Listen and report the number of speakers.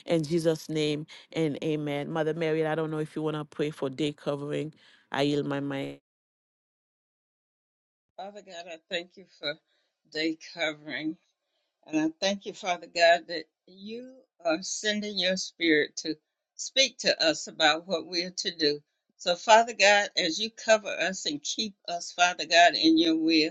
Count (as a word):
two